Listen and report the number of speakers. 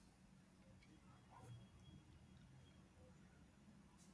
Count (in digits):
0